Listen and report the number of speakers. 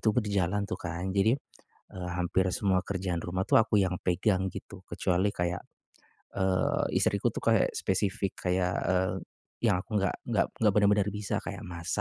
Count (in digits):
1